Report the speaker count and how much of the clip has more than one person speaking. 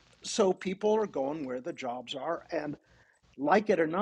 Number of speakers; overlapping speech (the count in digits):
1, no overlap